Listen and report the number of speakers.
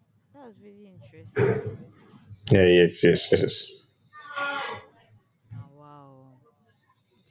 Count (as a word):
two